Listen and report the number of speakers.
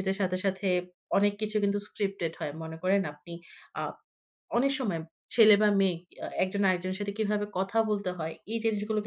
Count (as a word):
one